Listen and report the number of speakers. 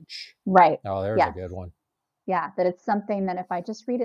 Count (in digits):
2